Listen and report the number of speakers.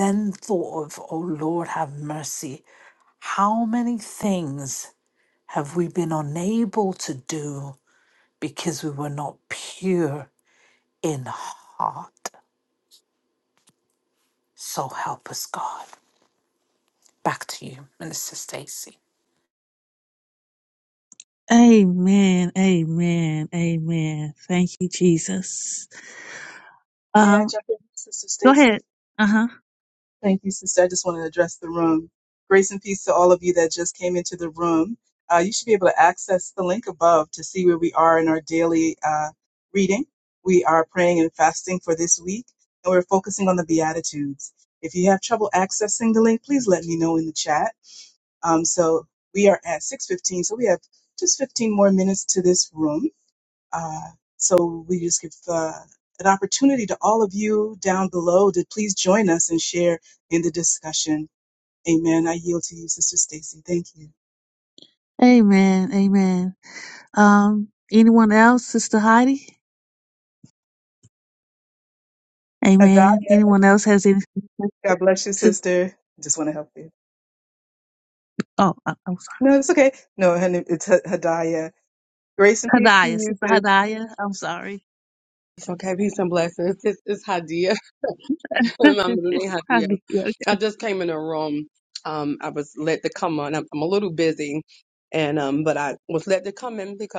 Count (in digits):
4